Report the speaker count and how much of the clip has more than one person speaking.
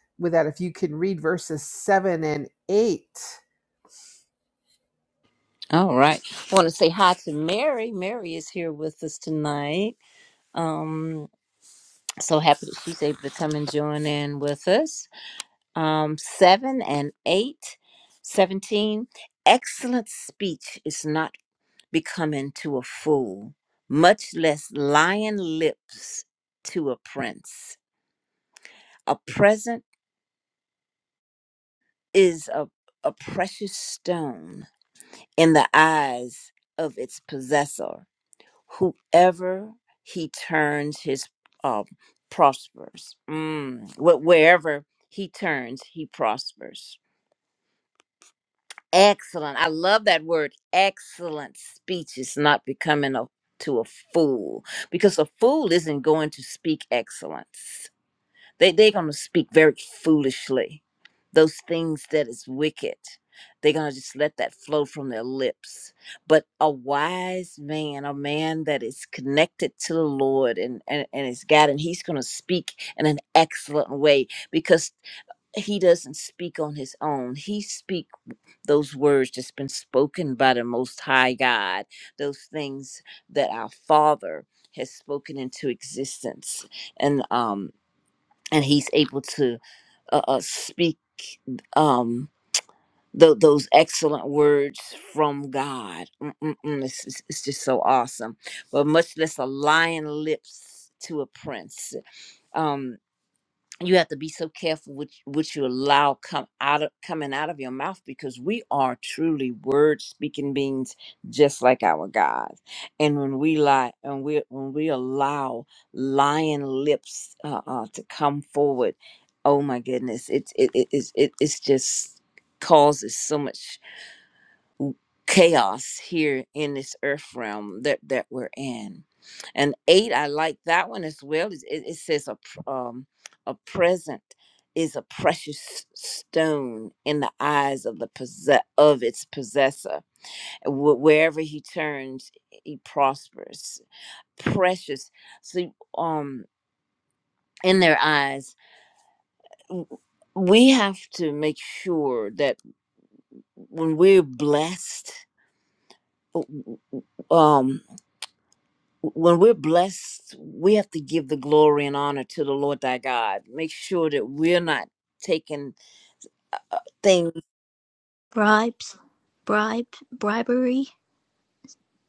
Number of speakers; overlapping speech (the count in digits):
3, no overlap